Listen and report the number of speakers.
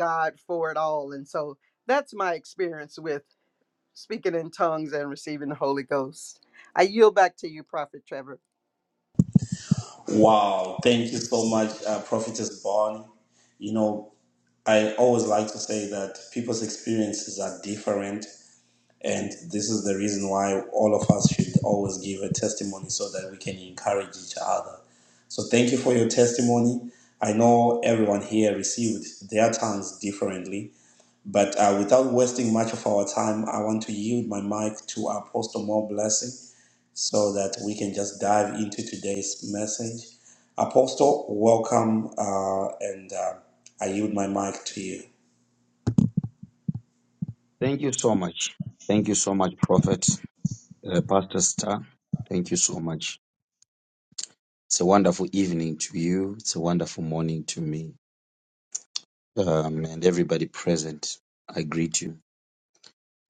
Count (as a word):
three